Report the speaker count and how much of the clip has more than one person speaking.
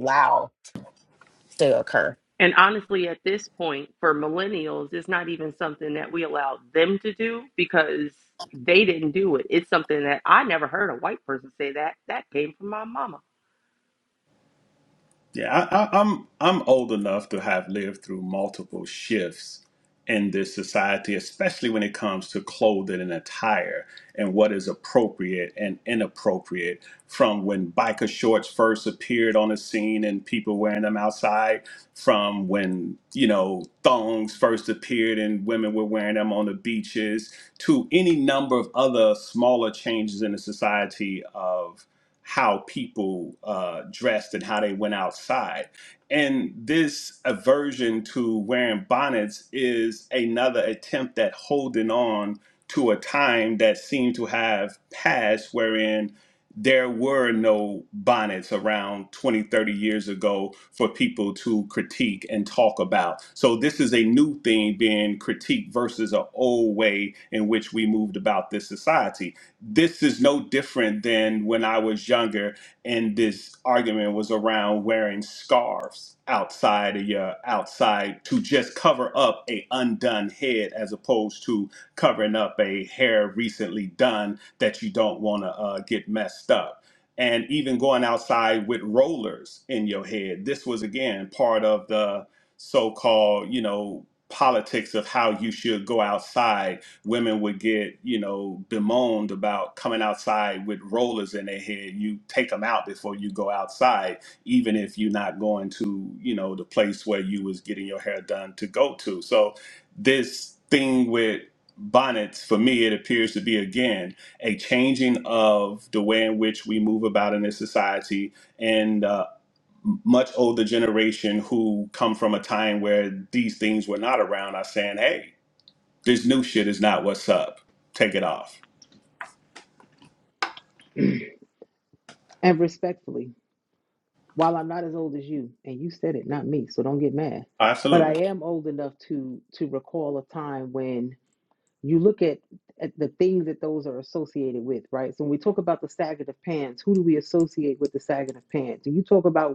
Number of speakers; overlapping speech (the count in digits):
4, under 1%